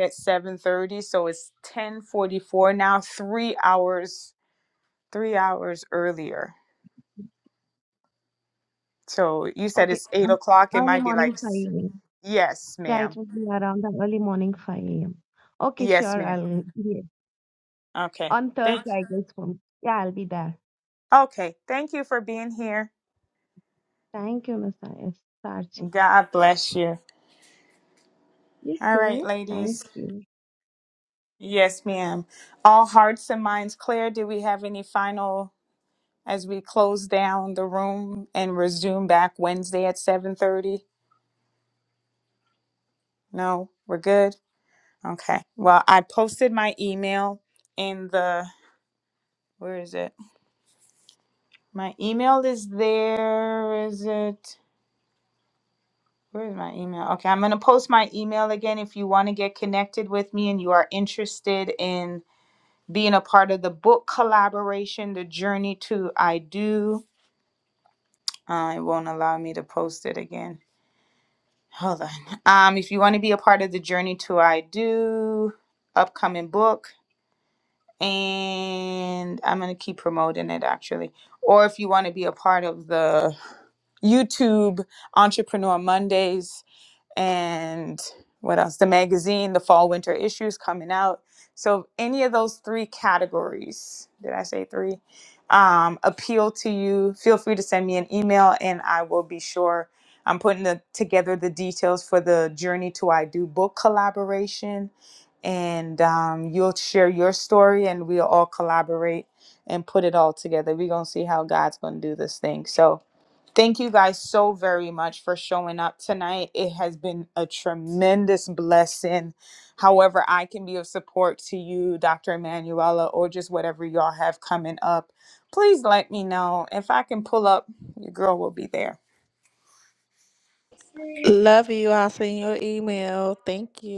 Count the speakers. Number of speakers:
three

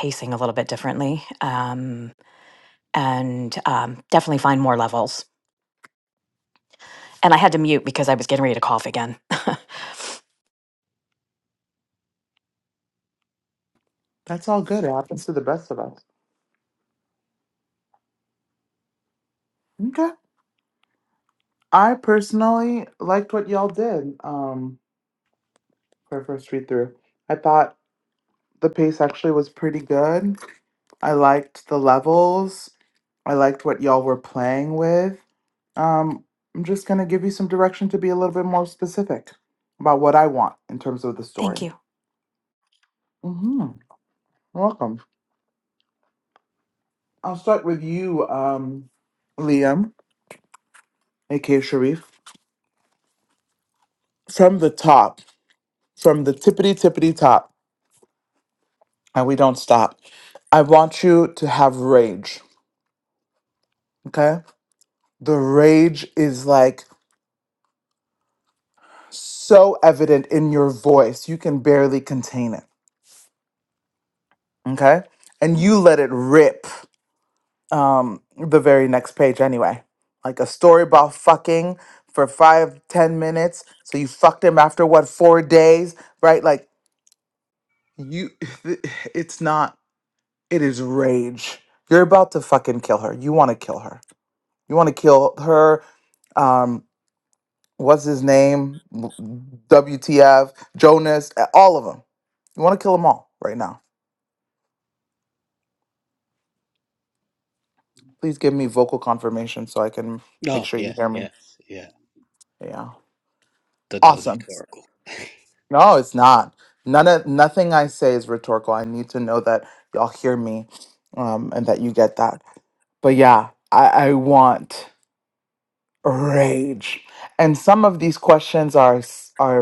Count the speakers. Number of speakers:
three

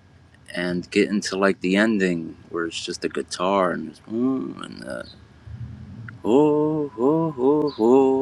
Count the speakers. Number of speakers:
one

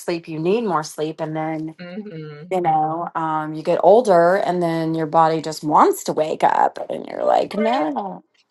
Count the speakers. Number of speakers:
two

